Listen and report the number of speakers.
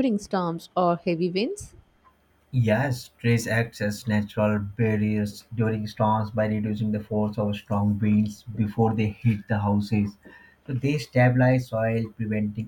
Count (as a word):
two